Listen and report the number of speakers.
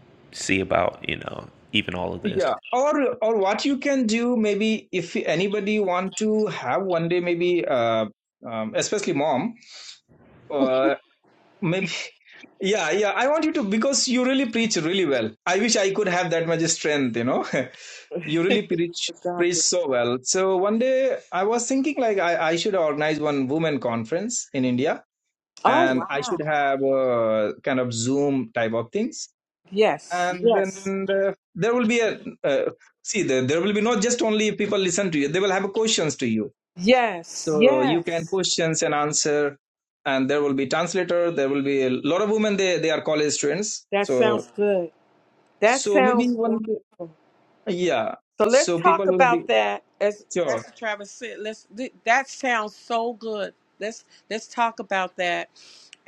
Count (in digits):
3